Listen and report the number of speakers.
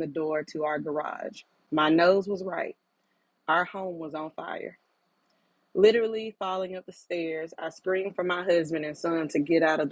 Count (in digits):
1